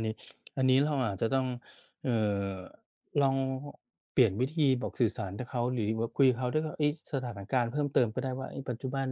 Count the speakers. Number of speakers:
1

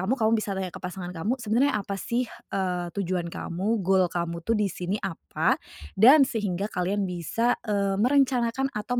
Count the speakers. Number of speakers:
1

